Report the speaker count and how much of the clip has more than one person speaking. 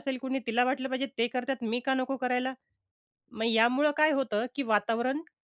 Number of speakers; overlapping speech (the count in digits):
1, no overlap